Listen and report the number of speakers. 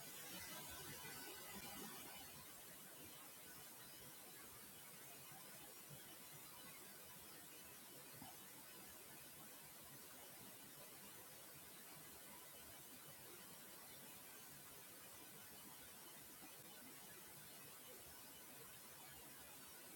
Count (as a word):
zero